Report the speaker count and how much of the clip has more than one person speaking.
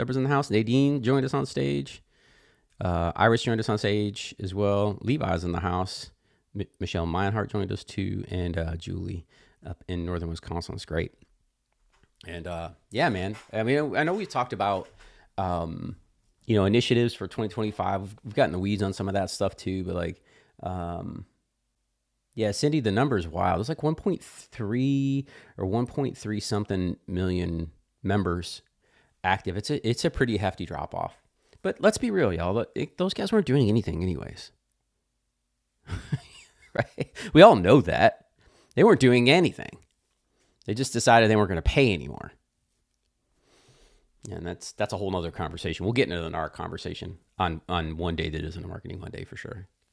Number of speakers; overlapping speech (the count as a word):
one, no overlap